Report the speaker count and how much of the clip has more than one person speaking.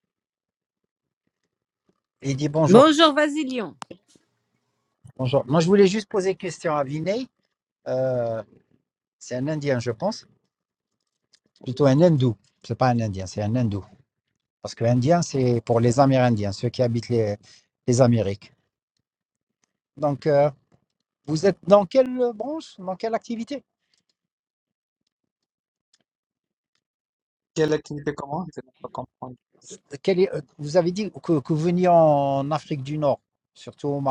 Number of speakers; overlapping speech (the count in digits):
3, about 1%